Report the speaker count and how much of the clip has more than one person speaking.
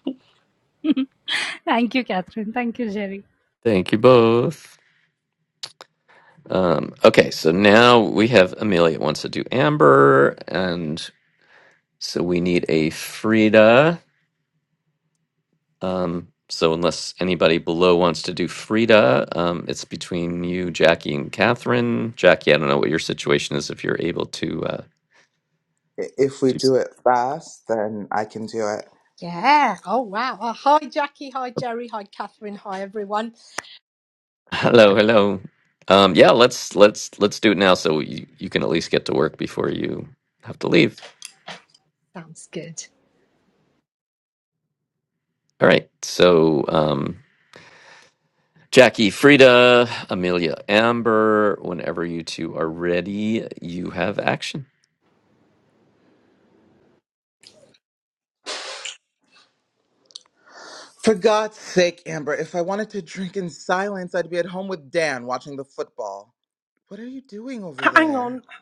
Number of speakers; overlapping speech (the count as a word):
four, about 1%